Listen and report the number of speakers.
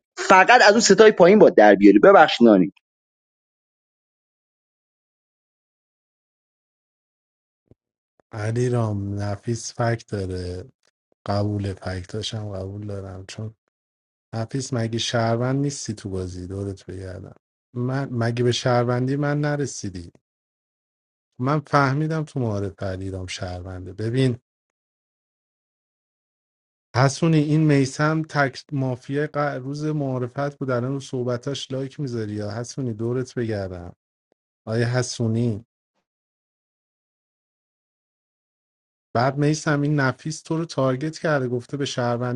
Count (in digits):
2